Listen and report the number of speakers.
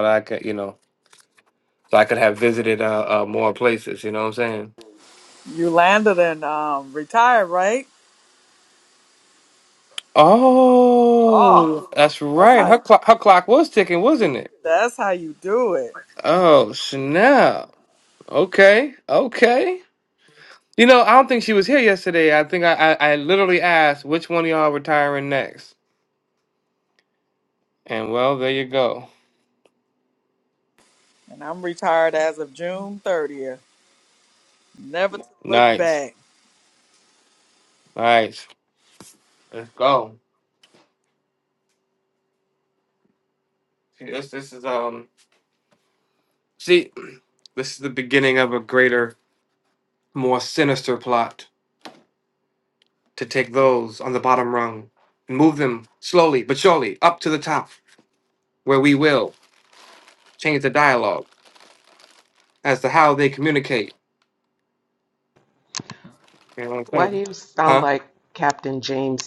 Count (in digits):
3